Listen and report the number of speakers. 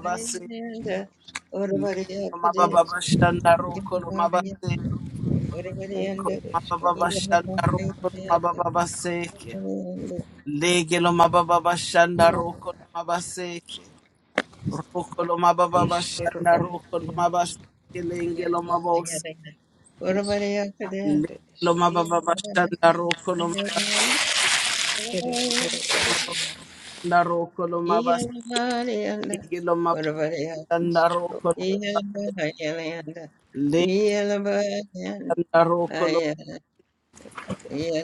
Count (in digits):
3